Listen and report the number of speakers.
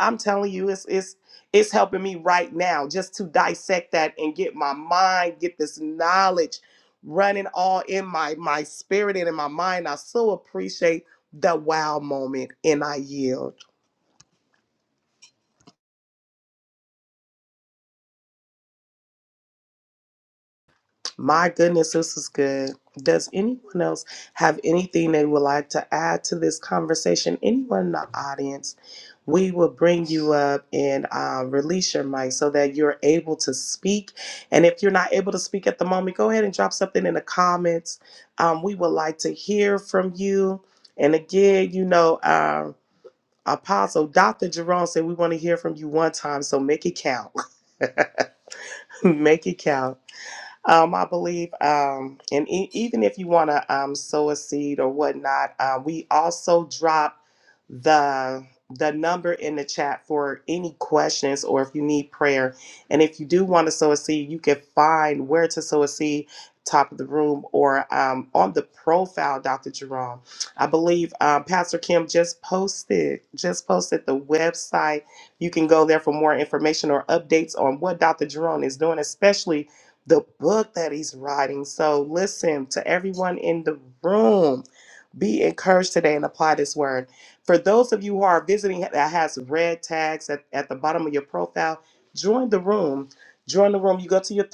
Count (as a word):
one